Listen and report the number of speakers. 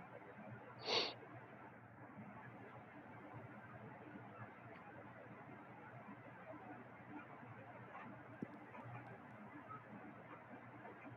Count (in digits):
0